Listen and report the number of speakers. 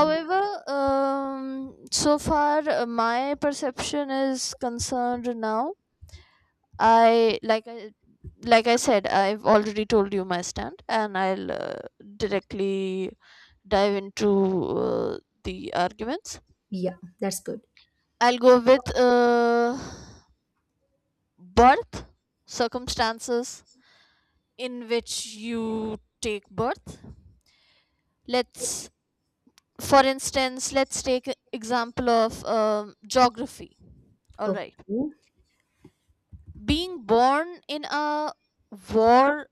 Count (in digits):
2